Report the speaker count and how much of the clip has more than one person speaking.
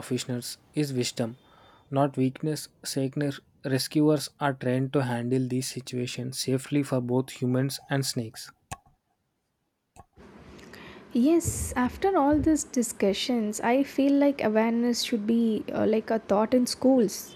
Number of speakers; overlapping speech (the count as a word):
two, no overlap